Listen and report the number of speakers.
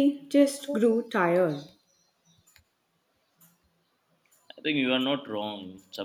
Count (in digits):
2